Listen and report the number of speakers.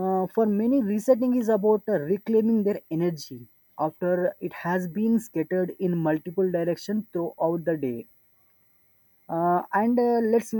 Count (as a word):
one